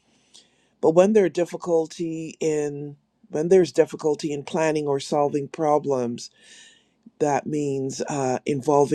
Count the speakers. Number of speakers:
1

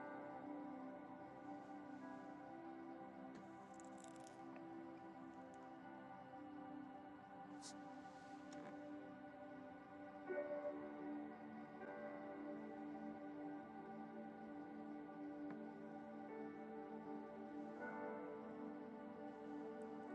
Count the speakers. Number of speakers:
0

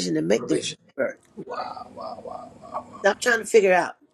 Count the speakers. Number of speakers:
2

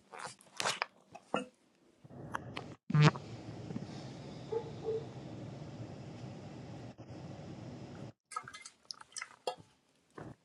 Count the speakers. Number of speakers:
0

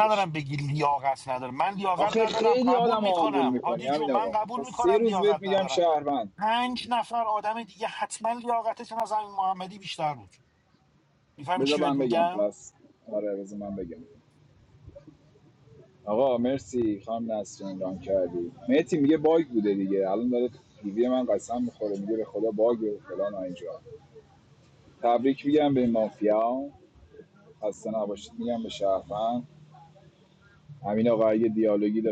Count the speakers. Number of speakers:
2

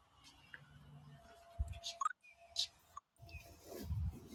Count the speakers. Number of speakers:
0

